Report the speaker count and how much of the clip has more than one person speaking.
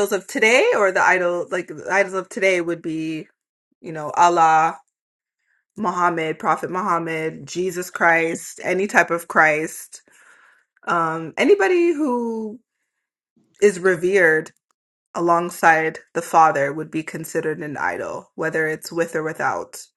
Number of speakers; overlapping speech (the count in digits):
1, no overlap